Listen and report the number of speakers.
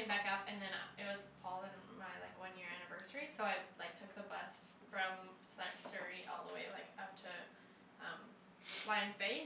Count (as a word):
one